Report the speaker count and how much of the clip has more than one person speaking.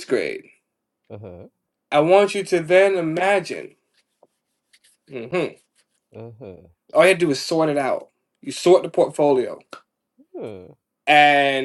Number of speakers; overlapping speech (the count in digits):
2, no overlap